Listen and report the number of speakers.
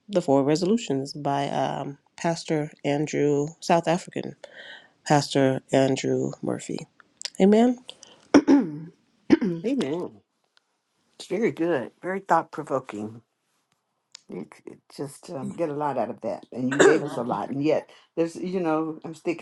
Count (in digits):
2